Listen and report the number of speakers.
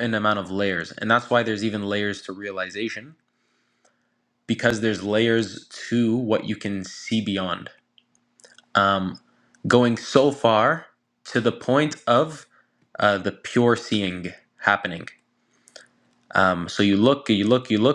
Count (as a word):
one